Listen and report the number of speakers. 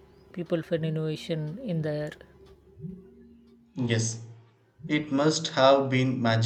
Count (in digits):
2